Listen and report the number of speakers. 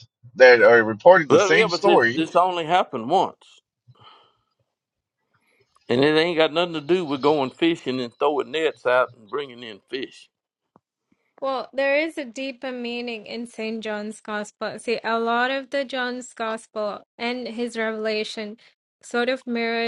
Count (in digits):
3